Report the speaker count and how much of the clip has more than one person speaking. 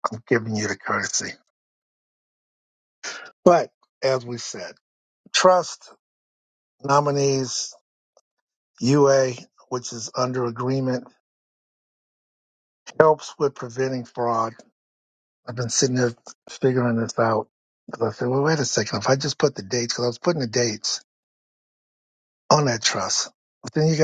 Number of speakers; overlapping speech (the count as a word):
one, no overlap